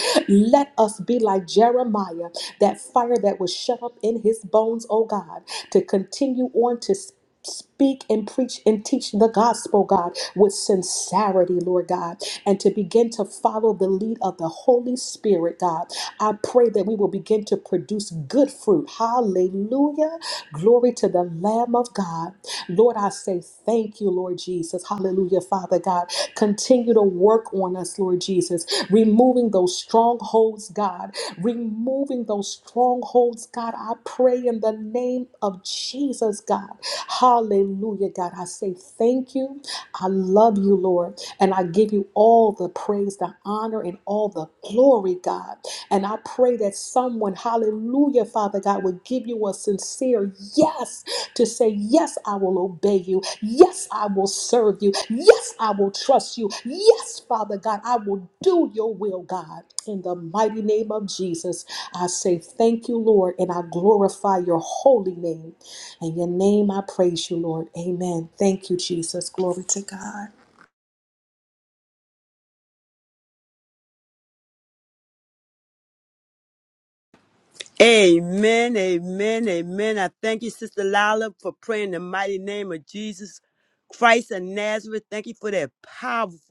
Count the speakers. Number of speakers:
two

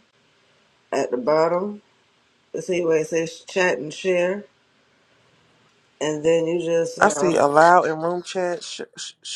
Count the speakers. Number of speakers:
two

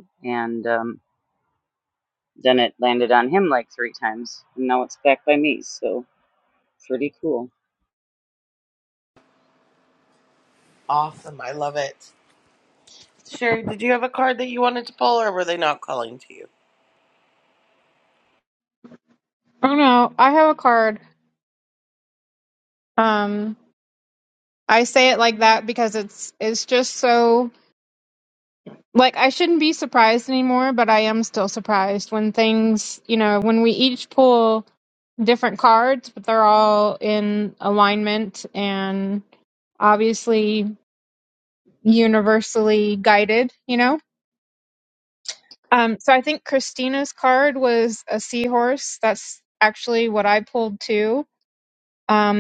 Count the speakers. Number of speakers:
three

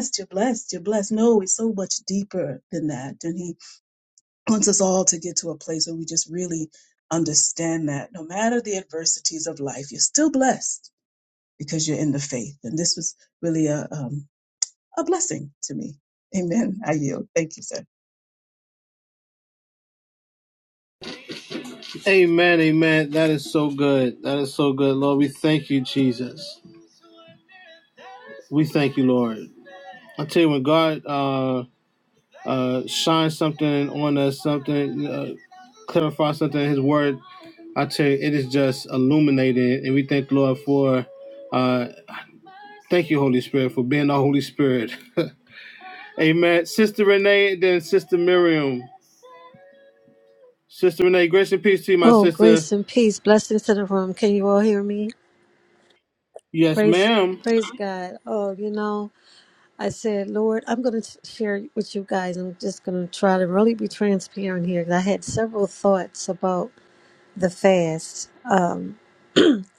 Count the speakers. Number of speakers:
three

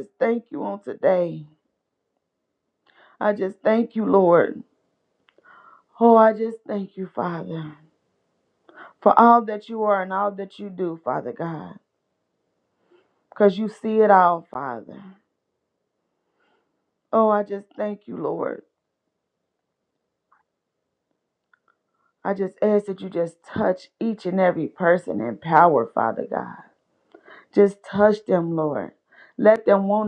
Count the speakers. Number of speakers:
one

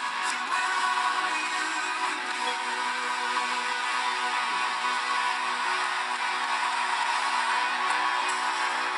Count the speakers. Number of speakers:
zero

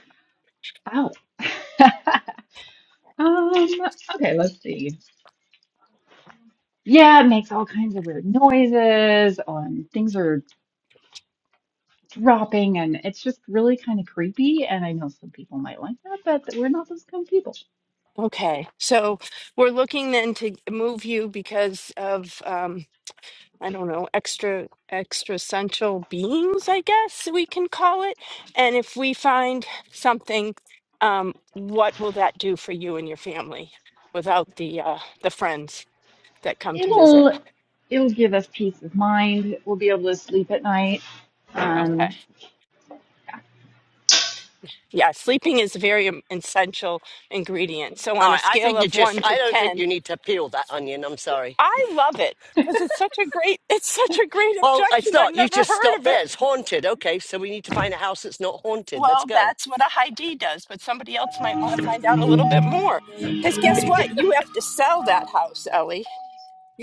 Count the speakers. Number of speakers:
three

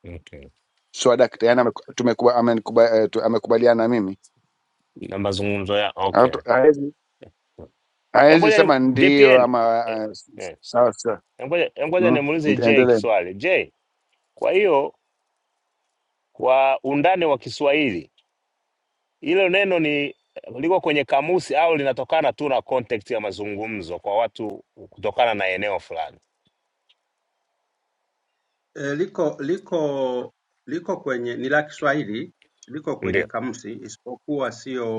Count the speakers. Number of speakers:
three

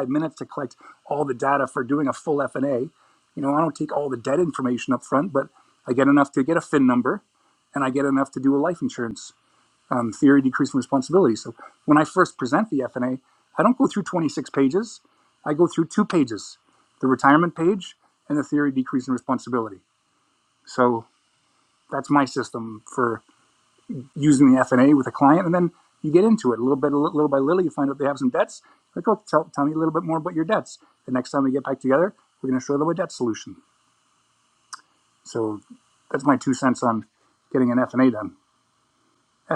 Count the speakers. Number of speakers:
one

